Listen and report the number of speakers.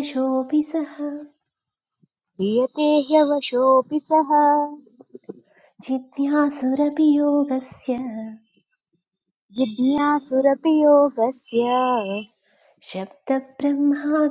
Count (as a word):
two